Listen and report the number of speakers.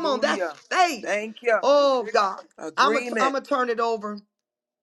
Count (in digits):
2